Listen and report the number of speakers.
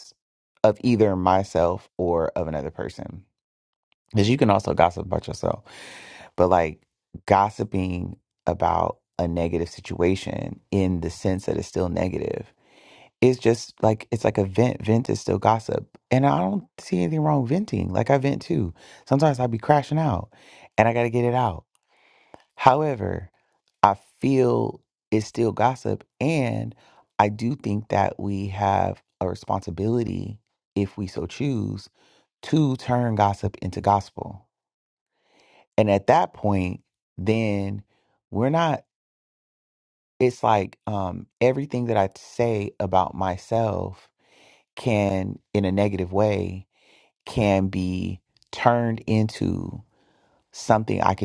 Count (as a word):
one